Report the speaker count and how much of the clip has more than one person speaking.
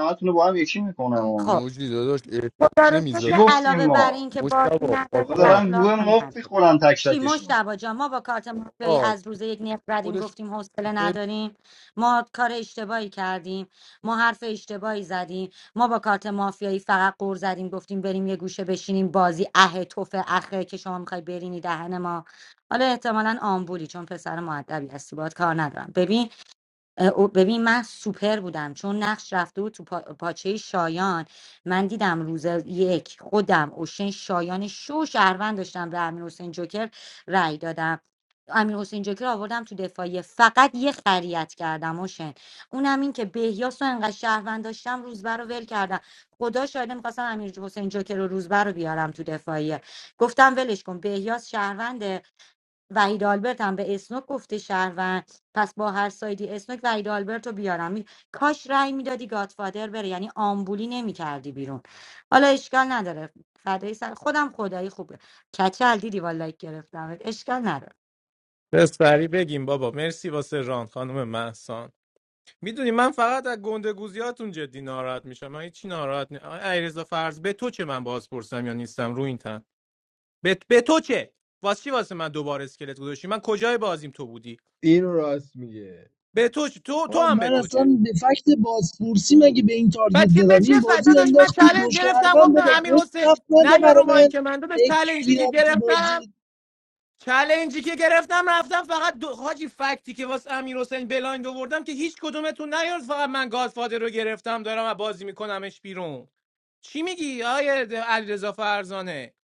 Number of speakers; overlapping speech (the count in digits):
6, about 10%